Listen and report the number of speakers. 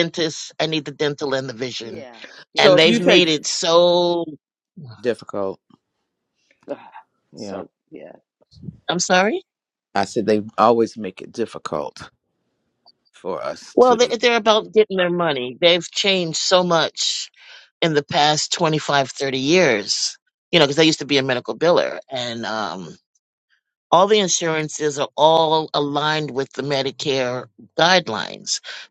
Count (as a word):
three